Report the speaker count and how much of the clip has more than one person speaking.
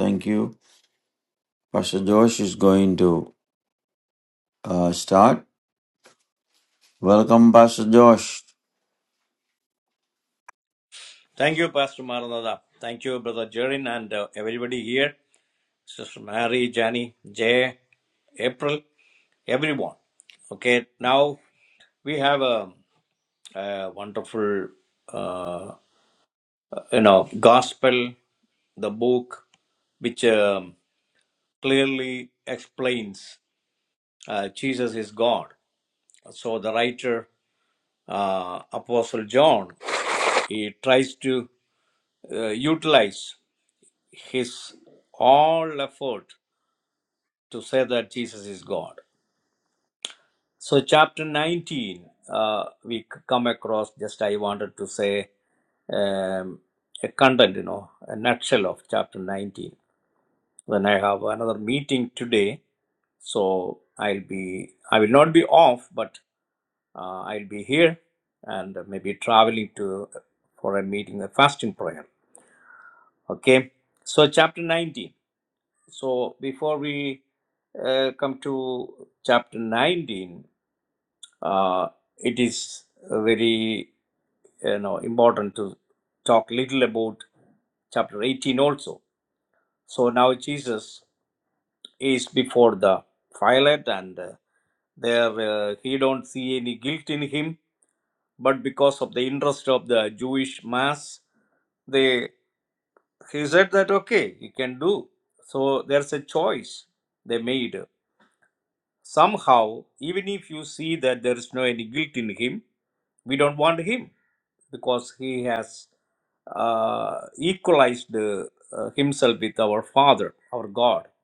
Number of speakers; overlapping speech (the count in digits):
2, no overlap